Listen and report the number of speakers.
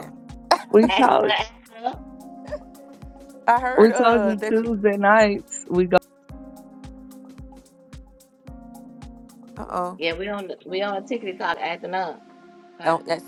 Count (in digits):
3